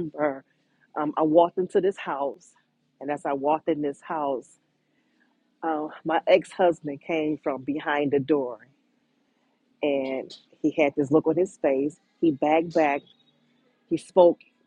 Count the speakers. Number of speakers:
one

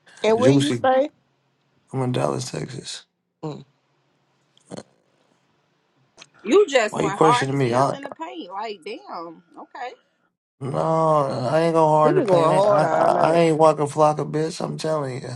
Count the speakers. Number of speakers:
three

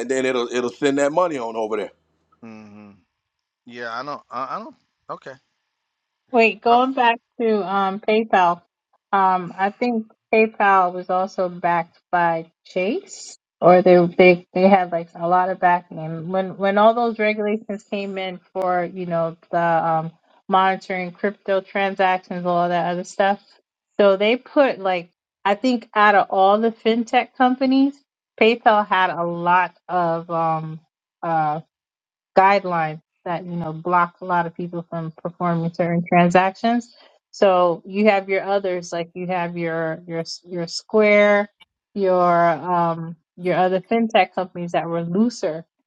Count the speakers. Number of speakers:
three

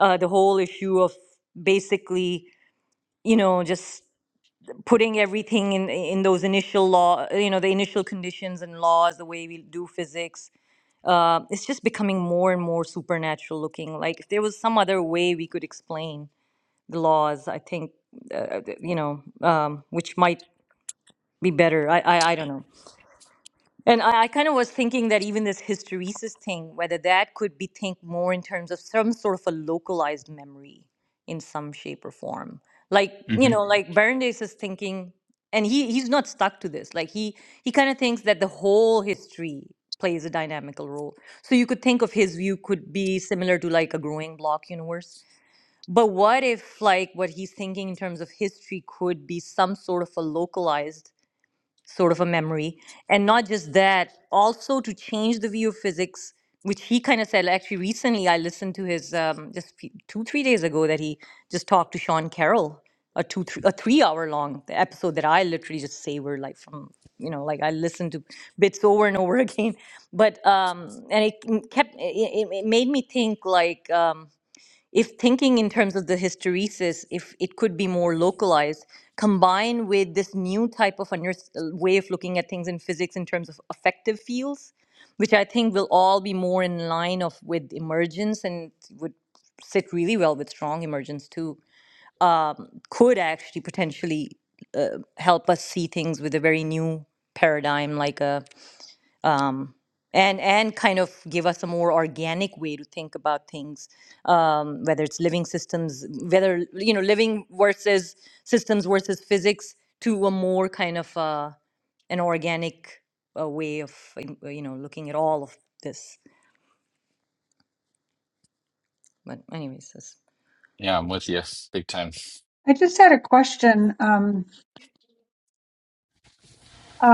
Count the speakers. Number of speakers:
three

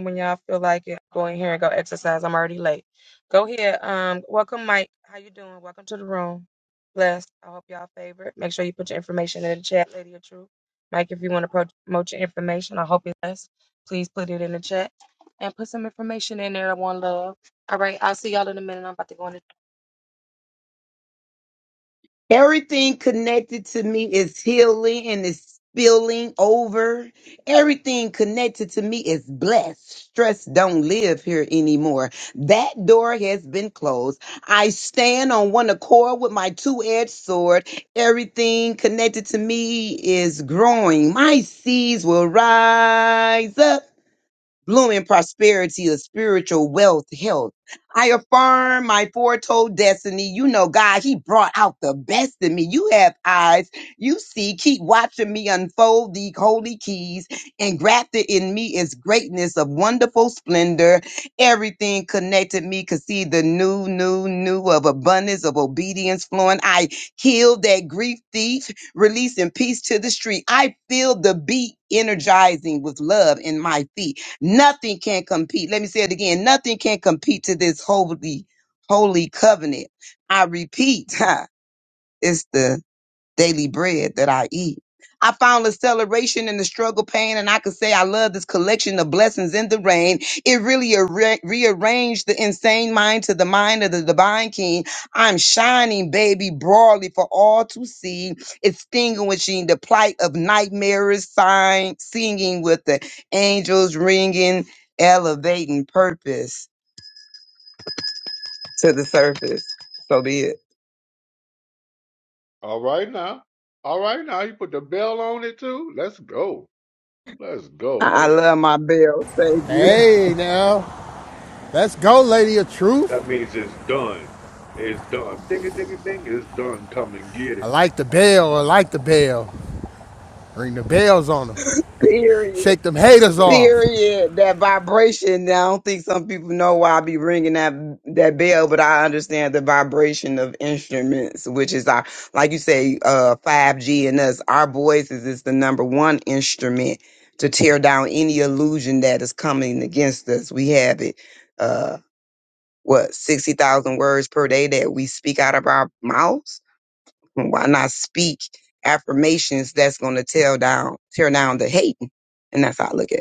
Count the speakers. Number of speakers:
four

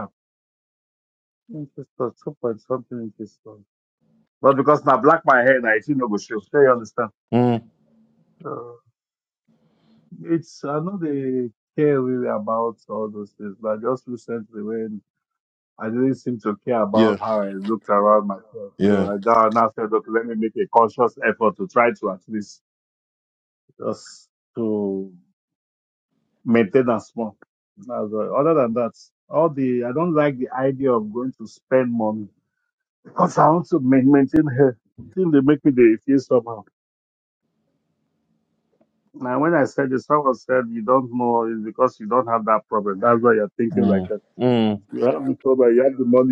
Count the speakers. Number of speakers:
two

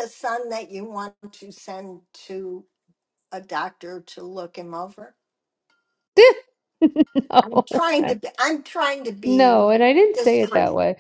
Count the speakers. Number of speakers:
two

